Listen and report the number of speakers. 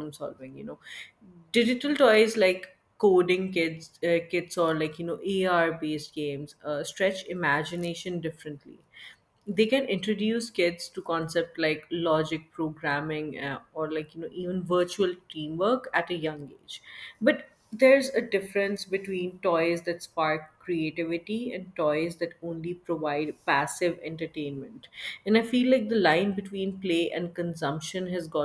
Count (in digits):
1